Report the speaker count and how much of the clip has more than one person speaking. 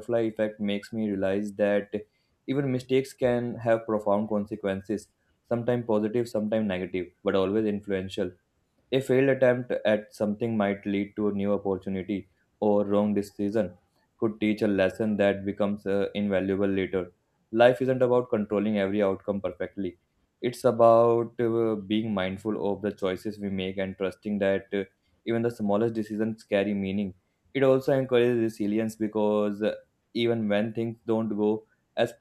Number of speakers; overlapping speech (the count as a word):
one, no overlap